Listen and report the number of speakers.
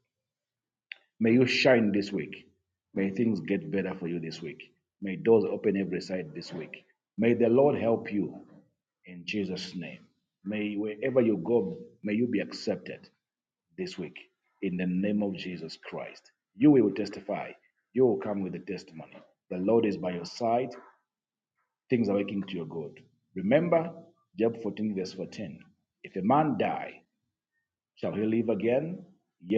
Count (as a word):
one